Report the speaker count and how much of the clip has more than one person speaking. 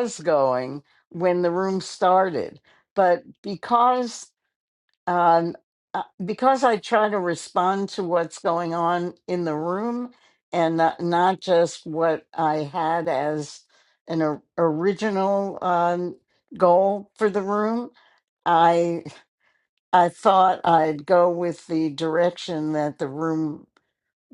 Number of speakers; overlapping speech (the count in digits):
1, no overlap